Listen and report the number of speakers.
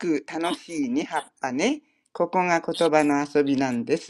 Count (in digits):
1